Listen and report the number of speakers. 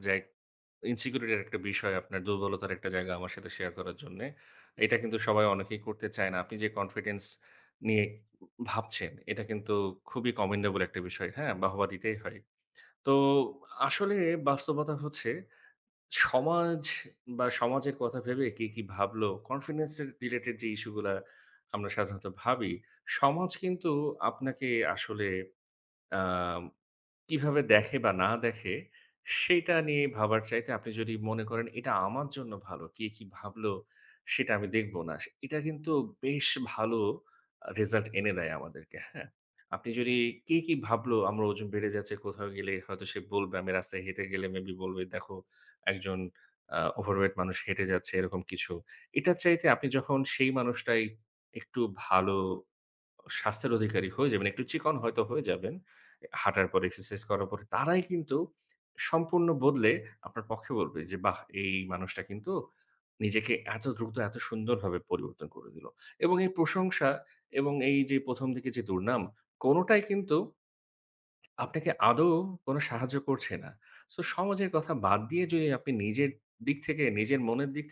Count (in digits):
1